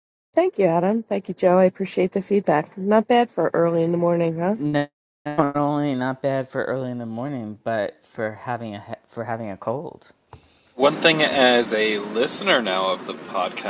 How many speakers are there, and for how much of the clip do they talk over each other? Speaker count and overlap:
3, no overlap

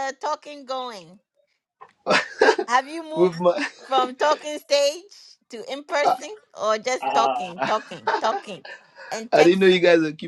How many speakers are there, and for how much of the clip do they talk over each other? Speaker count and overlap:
2, about 12%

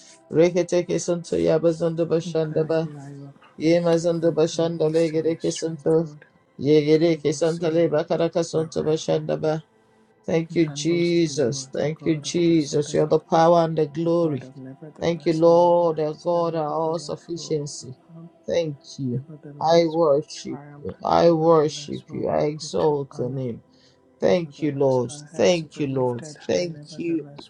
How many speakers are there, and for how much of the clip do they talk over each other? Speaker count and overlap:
1, no overlap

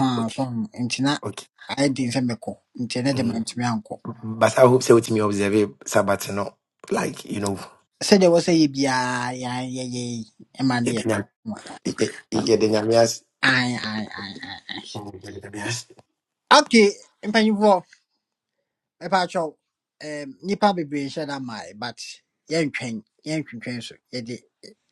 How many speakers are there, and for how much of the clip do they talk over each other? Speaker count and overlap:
2, about 2%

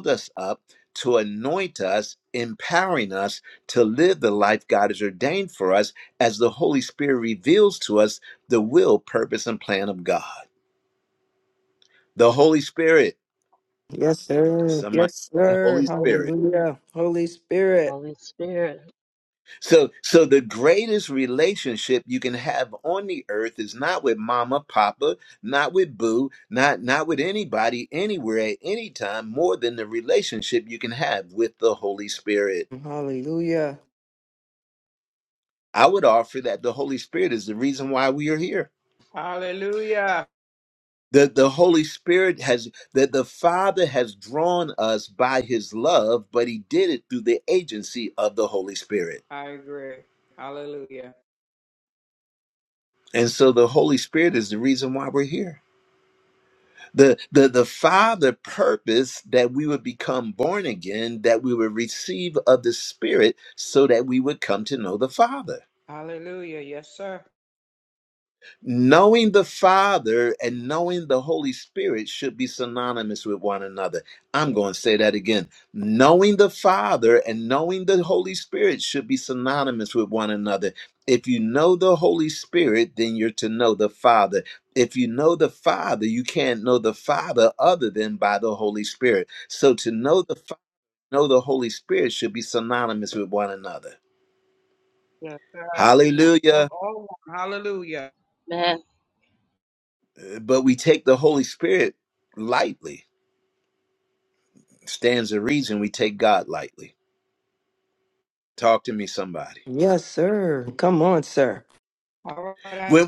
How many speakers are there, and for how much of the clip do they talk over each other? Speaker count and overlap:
4, about 2%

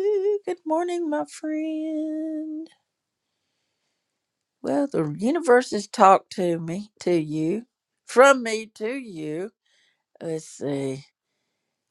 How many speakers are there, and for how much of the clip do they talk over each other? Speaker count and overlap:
1, no overlap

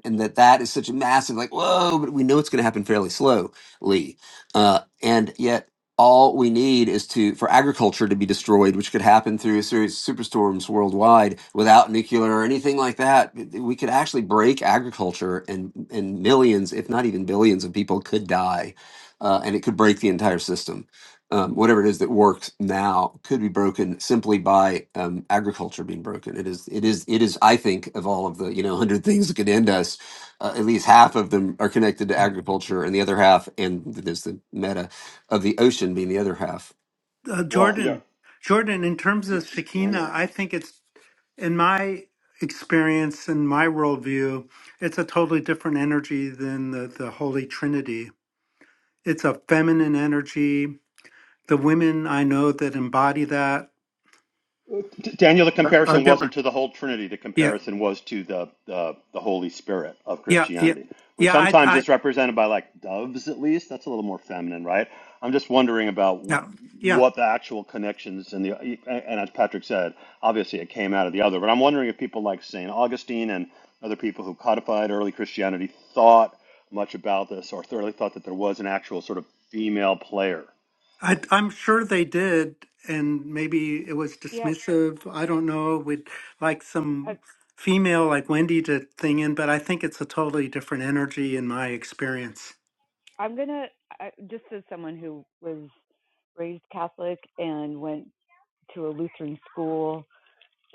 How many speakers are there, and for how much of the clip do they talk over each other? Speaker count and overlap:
4, about 4%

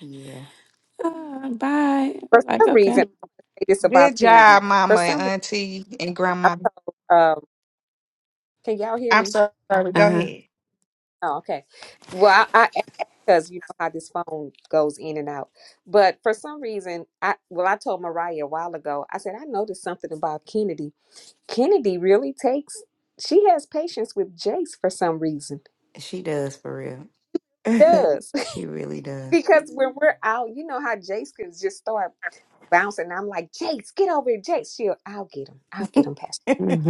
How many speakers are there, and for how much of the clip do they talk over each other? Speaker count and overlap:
4, about 8%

